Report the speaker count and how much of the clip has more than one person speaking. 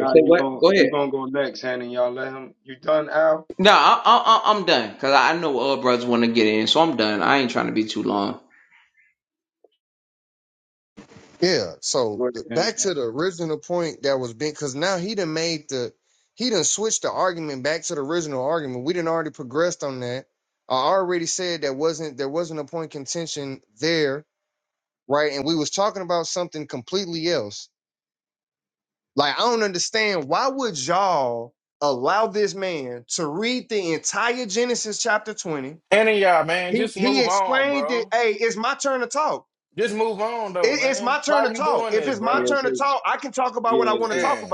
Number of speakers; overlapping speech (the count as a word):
four, about 14%